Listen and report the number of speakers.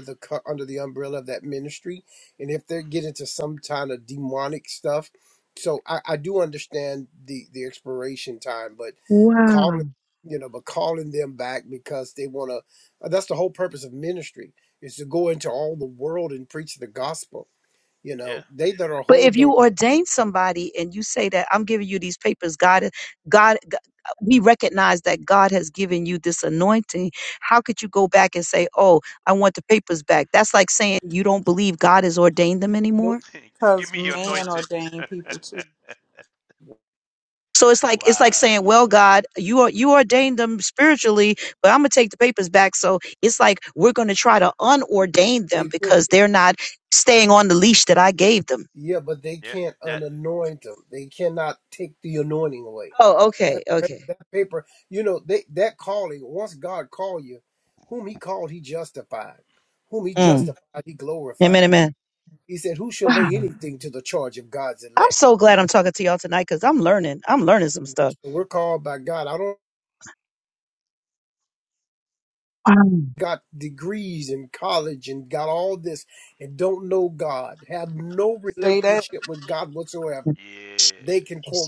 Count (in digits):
4